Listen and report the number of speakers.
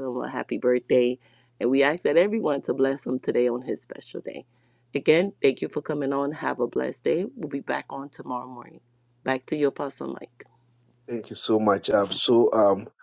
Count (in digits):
2